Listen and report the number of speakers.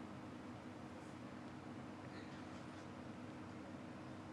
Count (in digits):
0